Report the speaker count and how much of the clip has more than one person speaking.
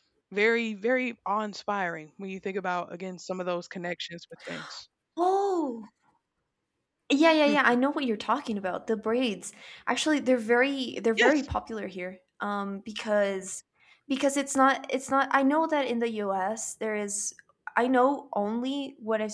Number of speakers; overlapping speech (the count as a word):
two, about 3%